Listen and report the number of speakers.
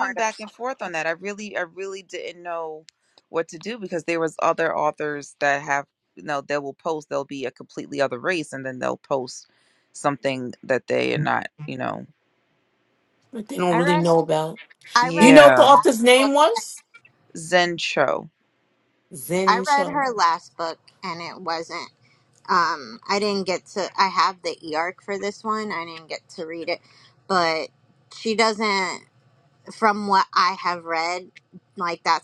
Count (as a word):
three